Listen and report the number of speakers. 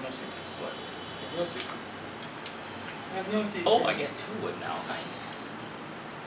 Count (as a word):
two